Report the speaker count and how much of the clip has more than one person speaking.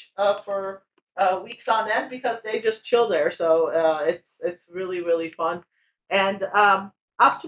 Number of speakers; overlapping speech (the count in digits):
1, no overlap